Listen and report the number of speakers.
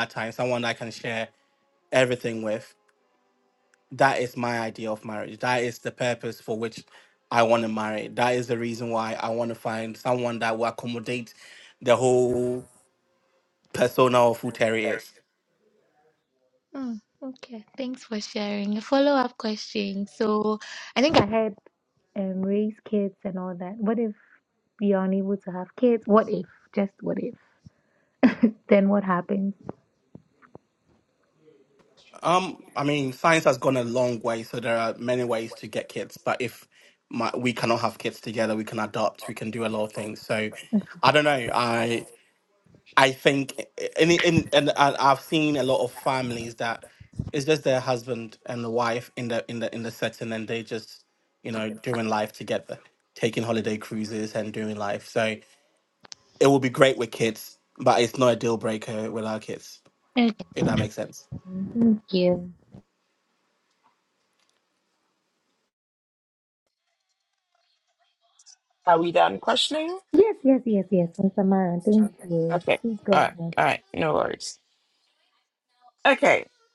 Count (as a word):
three